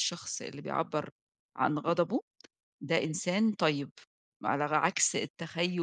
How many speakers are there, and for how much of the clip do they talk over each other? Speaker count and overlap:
1, no overlap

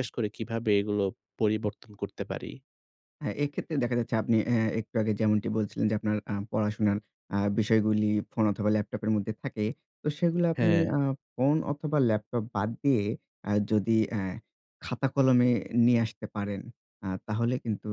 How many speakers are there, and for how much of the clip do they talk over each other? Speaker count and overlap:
2, about 2%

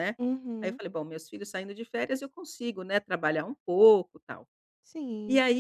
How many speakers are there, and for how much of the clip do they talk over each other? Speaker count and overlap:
2, about 5%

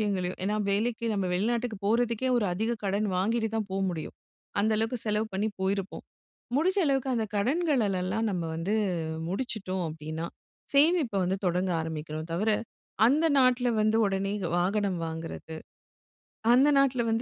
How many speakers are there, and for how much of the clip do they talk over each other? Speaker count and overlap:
1, no overlap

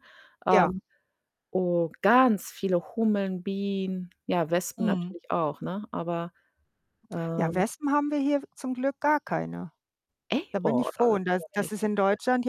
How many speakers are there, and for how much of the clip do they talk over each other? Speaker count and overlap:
2, about 6%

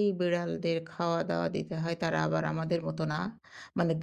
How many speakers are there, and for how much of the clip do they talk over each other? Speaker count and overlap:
1, no overlap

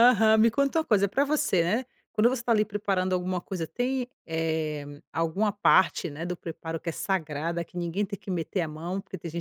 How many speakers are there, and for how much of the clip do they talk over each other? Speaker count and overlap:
1, no overlap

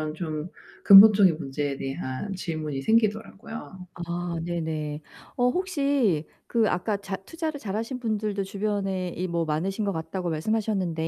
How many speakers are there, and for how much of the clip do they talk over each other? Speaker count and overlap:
2, no overlap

